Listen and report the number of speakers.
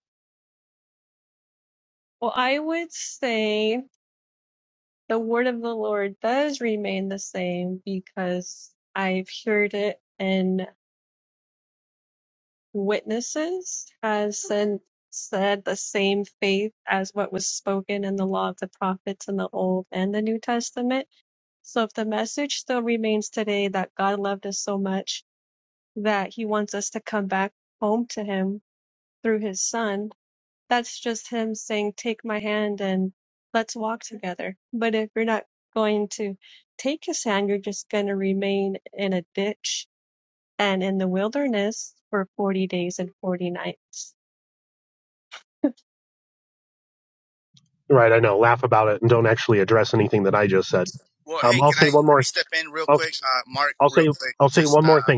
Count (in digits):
3